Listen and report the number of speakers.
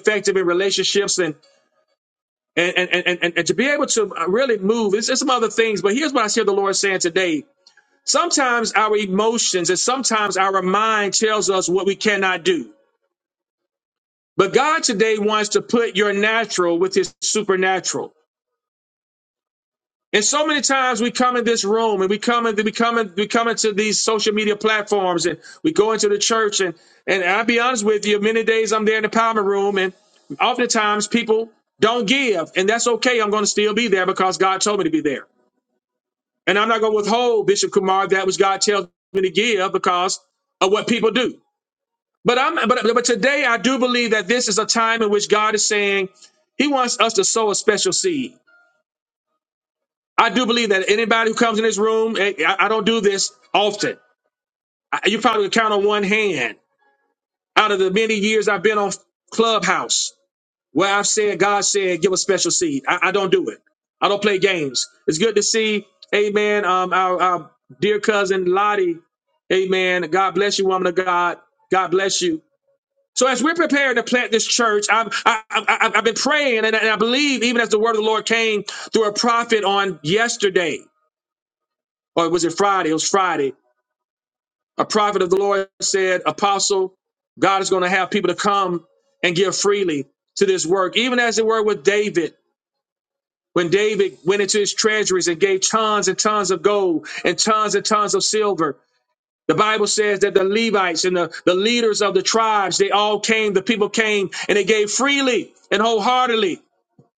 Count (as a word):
one